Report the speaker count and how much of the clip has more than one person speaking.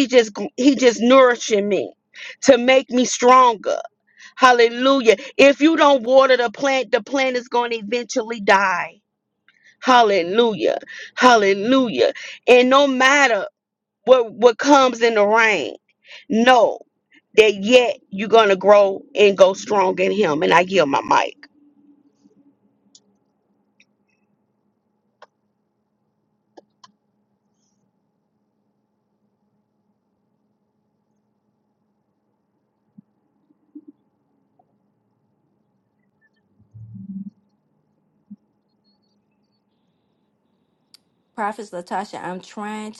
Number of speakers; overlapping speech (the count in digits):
2, no overlap